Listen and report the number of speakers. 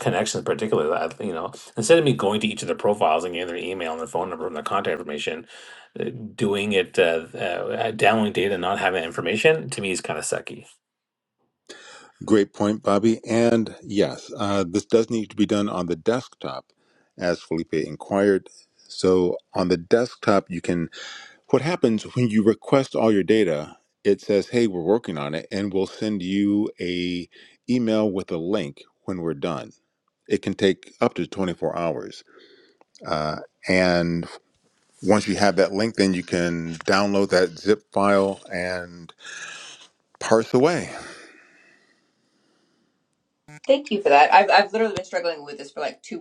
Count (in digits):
3